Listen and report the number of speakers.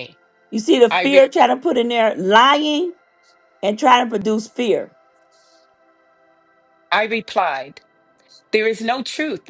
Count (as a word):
two